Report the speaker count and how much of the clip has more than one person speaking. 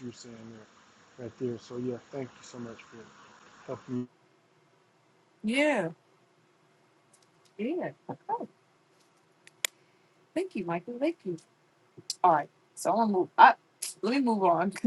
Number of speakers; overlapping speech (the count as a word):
two, no overlap